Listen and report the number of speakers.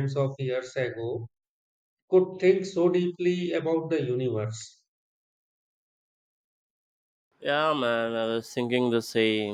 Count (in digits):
2